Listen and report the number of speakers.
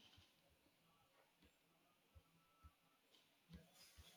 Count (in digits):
0